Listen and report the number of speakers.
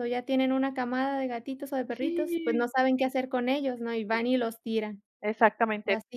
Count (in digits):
2